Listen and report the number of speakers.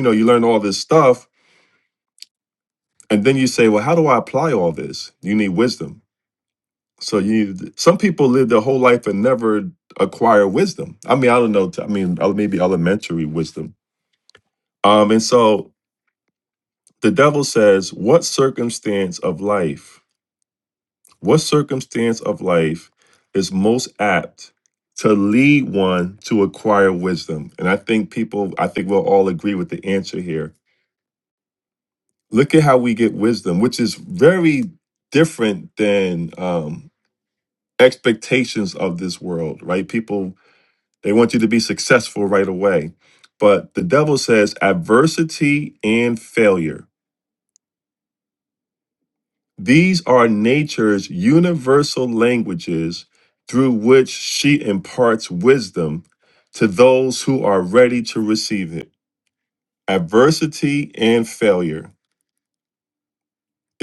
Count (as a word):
one